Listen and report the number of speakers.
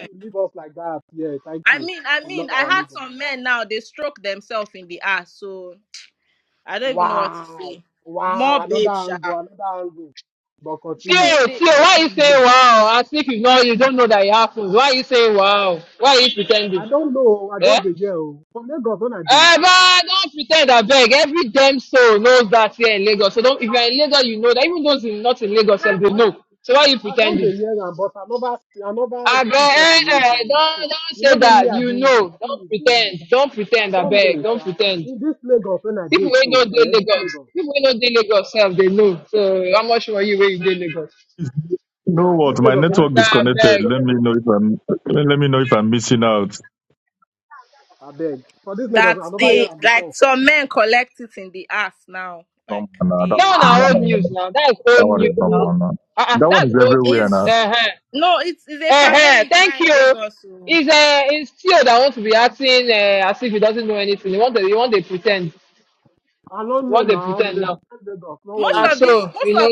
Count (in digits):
4